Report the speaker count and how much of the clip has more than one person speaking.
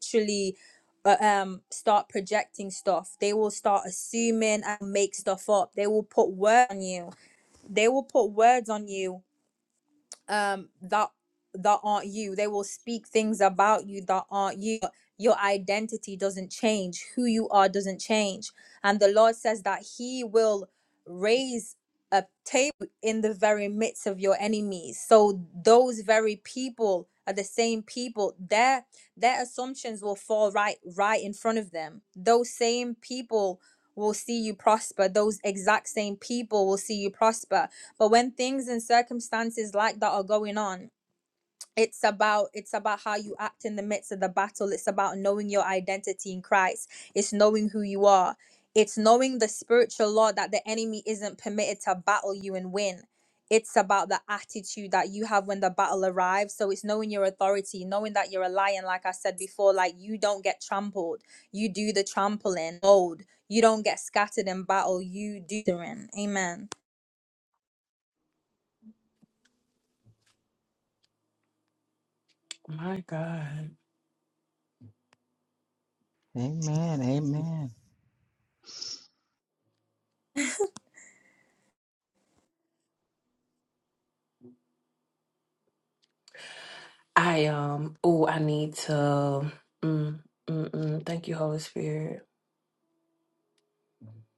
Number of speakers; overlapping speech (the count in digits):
3, no overlap